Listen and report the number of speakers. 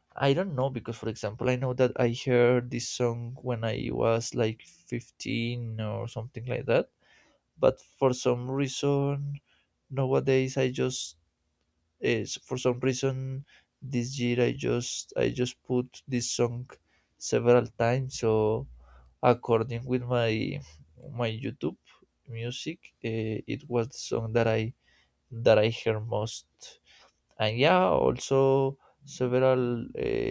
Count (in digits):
1